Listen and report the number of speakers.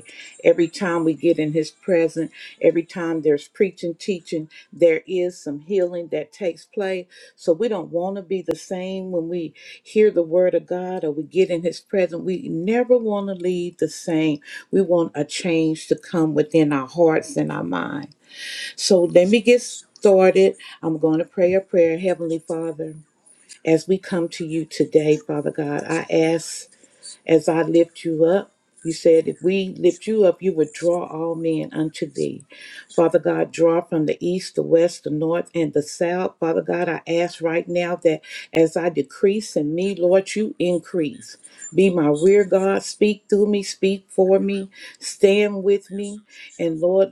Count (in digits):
1